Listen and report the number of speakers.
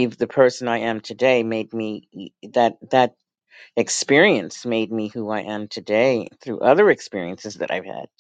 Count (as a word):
one